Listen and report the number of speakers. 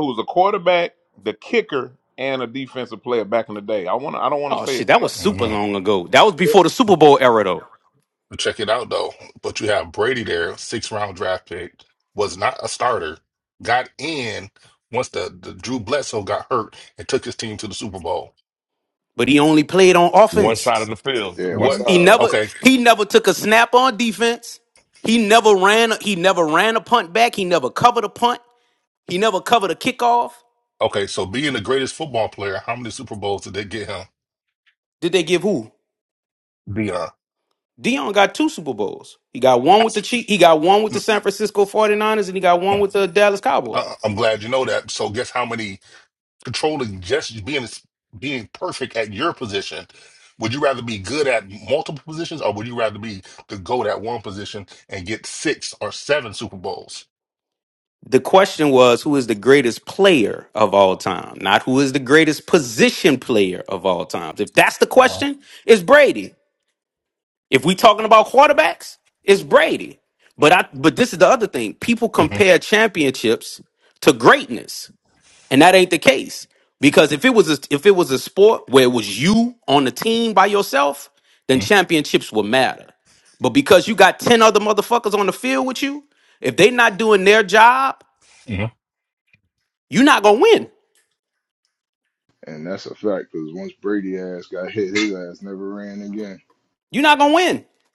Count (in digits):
5